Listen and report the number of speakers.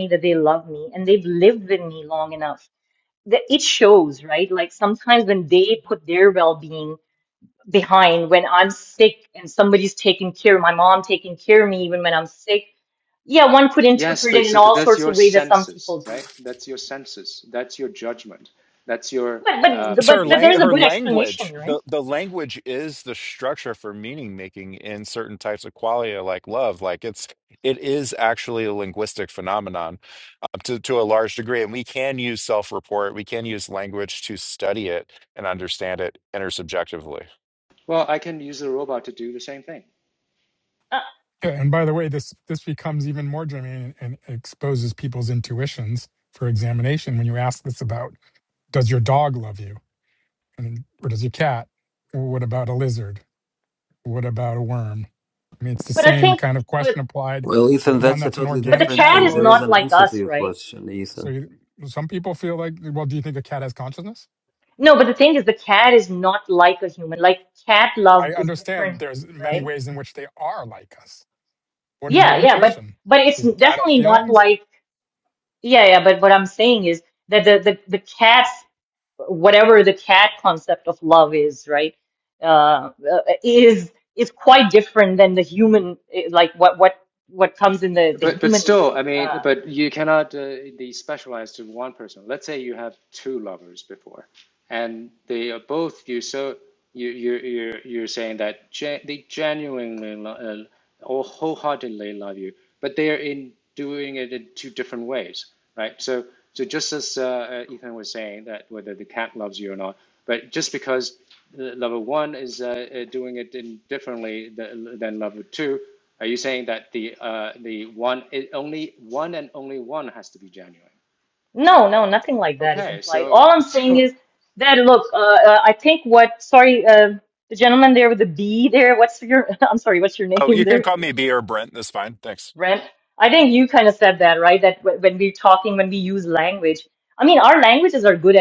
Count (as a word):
five